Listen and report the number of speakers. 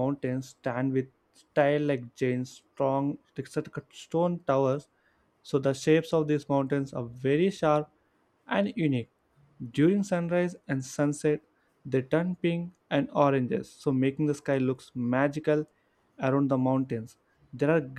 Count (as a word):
one